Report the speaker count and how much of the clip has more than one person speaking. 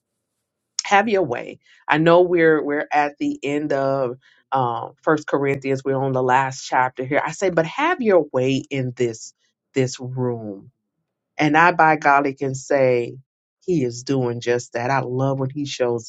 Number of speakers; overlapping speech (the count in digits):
1, no overlap